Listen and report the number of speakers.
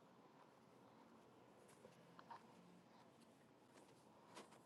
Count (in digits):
0